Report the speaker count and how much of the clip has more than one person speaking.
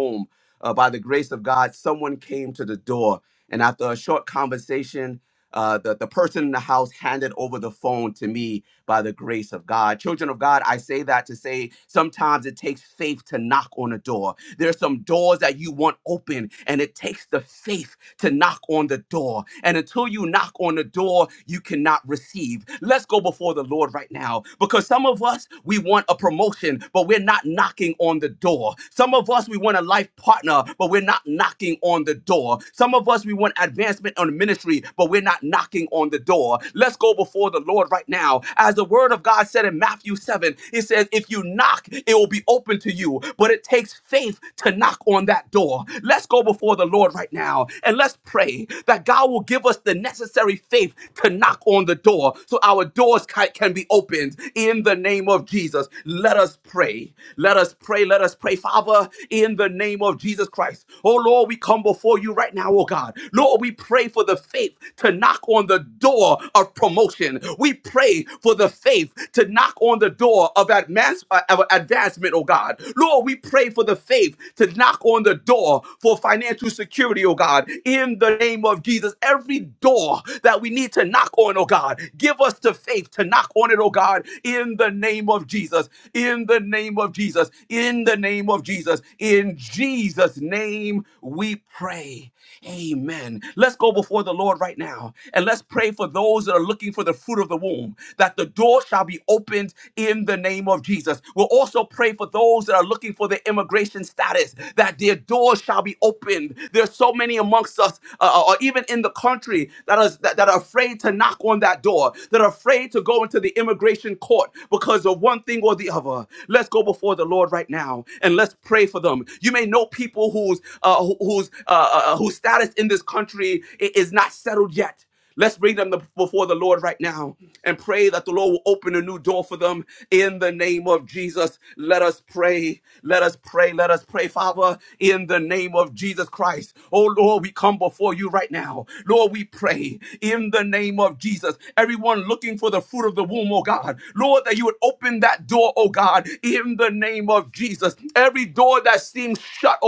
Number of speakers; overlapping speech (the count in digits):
1, no overlap